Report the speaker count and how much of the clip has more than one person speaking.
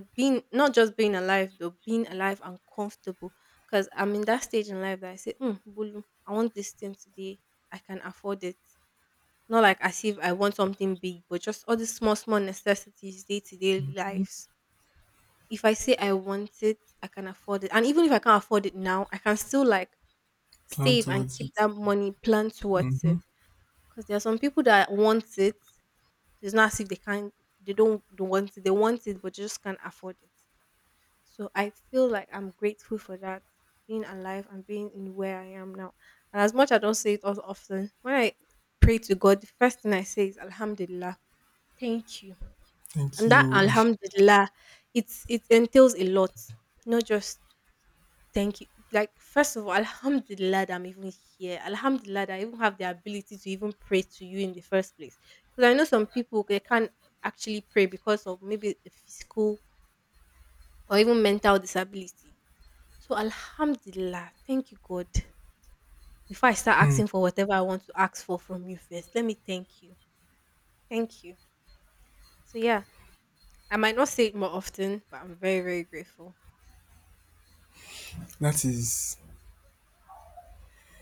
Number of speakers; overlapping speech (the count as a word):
two, about 2%